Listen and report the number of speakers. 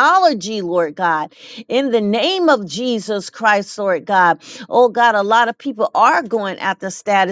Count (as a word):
one